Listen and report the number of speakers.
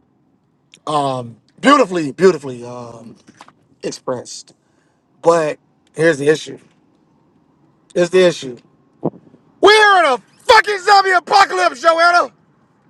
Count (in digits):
1